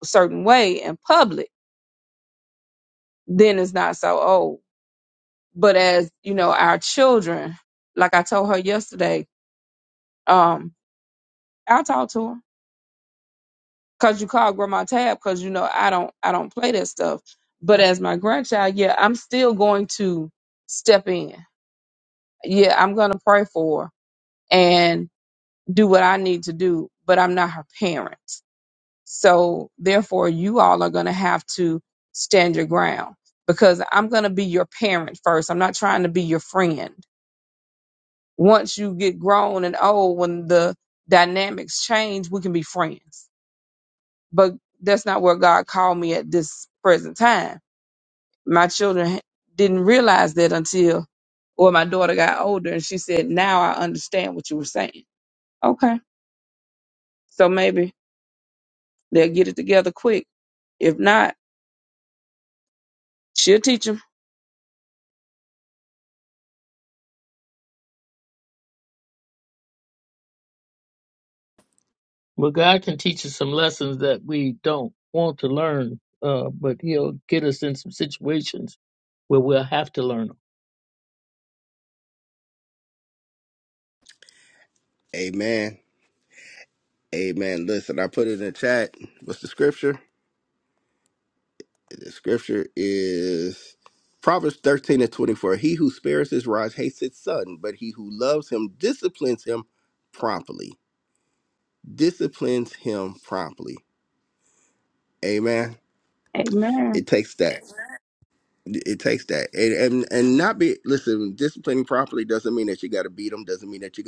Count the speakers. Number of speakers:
3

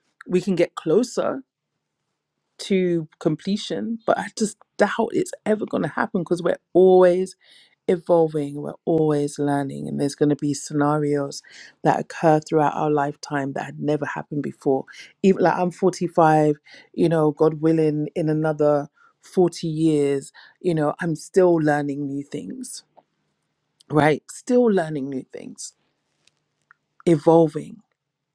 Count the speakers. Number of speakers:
1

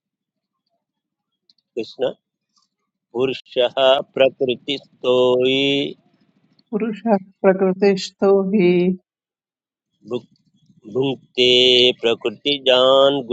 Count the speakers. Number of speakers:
2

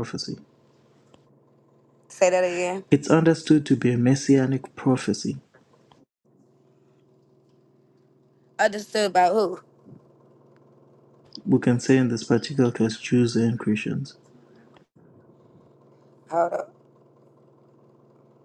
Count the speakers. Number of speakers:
2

